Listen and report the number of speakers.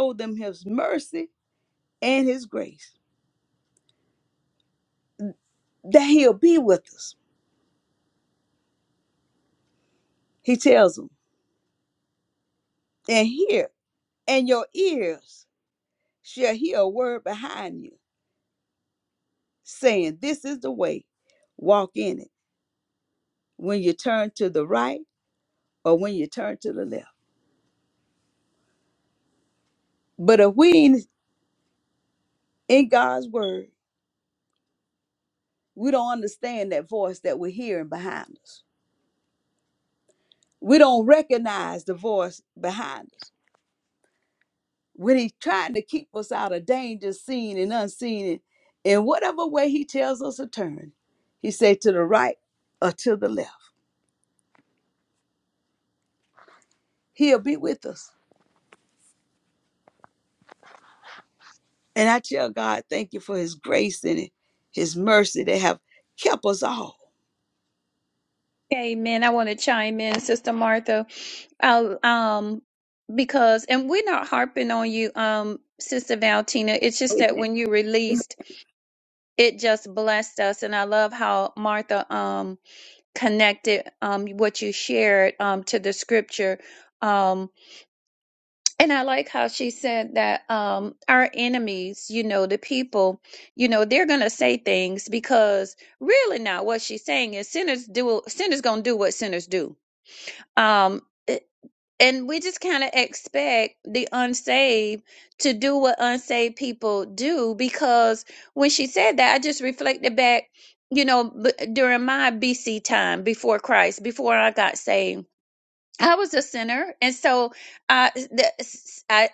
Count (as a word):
two